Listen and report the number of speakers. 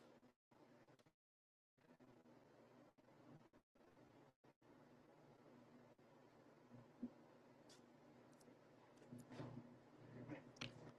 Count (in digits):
0